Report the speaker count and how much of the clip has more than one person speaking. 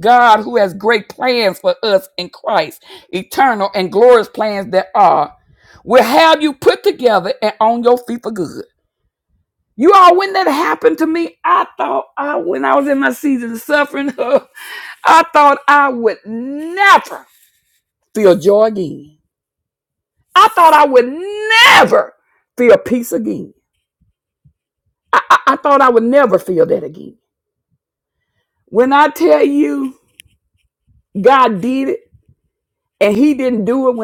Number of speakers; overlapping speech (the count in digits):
1, no overlap